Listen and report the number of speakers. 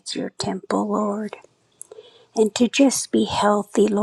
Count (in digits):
1